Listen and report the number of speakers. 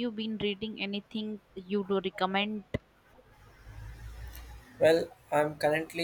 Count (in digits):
2